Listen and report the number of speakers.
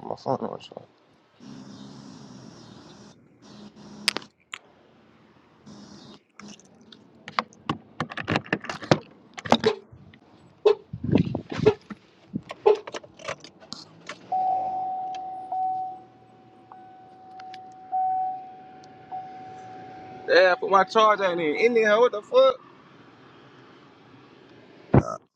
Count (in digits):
1